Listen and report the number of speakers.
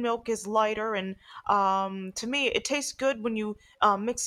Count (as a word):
one